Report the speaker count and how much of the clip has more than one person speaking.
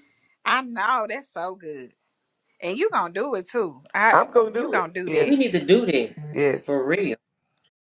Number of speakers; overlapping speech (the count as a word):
three, about 11%